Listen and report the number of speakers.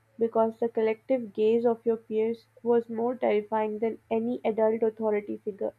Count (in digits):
1